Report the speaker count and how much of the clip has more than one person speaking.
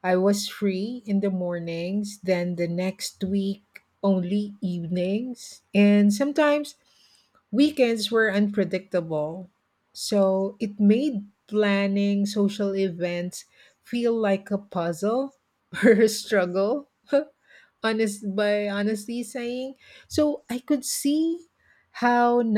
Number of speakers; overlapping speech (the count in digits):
1, no overlap